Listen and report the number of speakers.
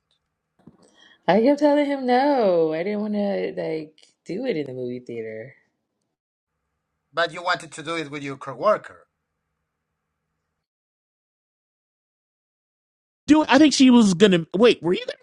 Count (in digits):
3